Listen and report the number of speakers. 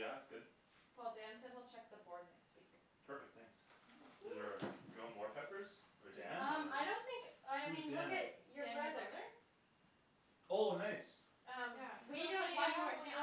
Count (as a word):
four